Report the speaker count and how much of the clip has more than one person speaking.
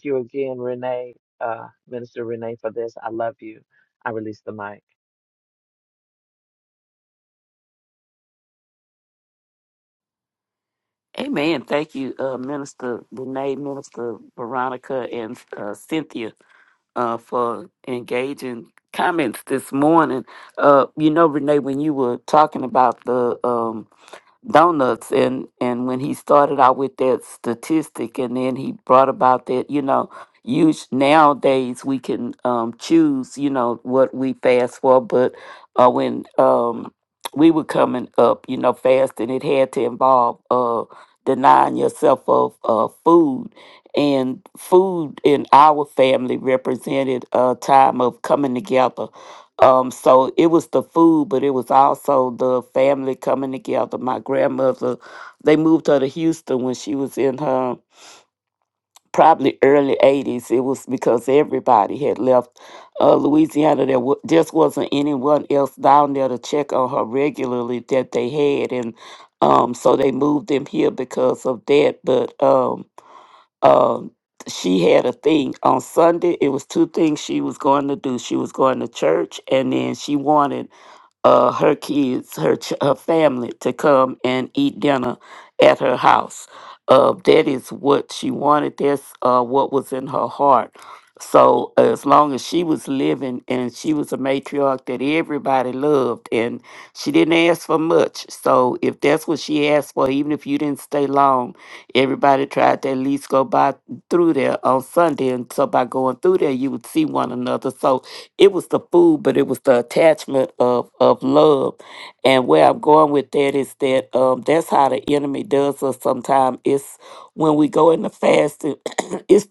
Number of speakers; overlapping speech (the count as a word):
two, no overlap